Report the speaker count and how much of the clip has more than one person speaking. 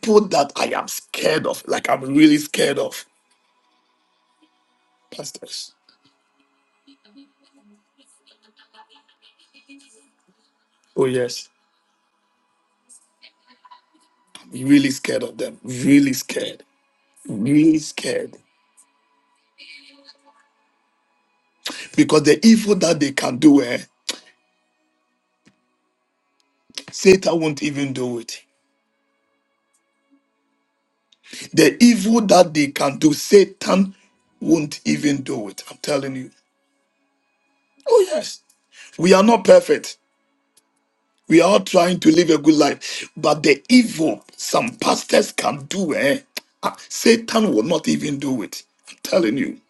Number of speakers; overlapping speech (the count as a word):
one, no overlap